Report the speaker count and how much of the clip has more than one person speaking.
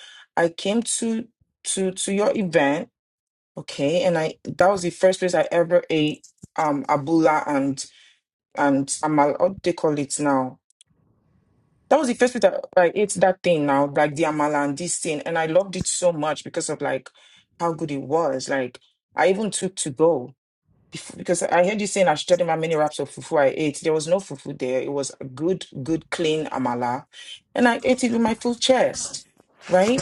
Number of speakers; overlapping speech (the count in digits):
1, no overlap